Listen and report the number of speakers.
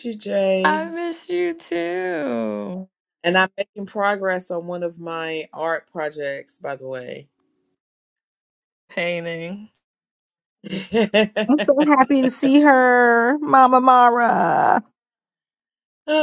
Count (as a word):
three